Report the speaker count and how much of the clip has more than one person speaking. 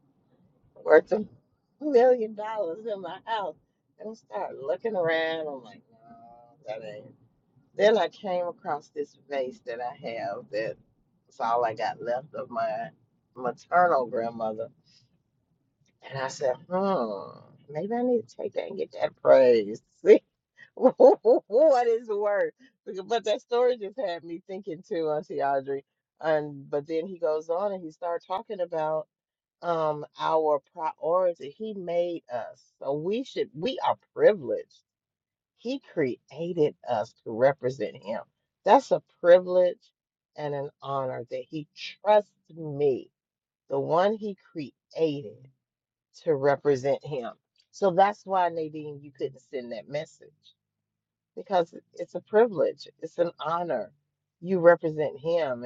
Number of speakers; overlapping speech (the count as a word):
one, no overlap